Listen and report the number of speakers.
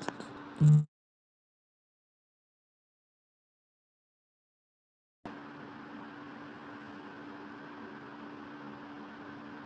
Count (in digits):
0